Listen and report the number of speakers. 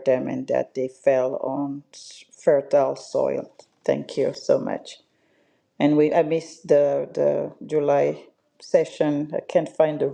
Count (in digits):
1